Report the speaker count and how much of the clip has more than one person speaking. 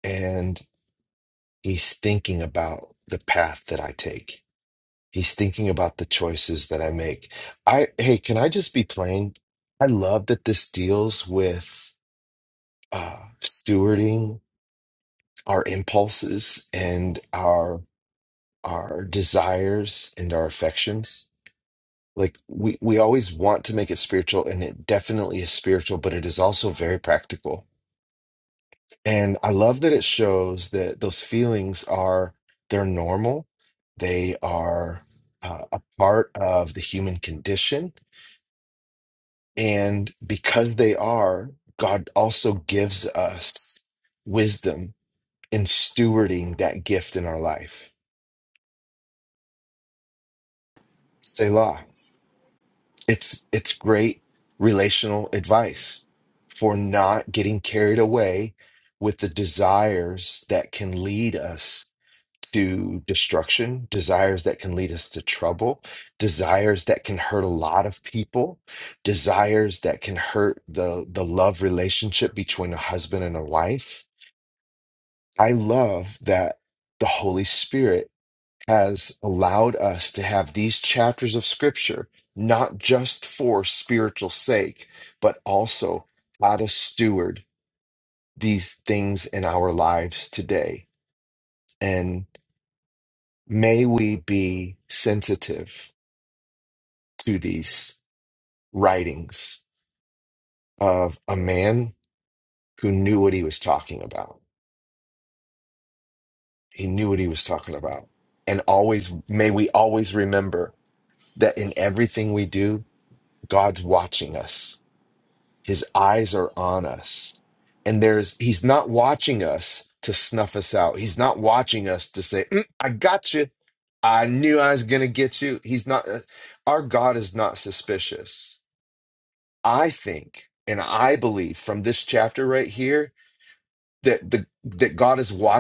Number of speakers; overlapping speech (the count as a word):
one, no overlap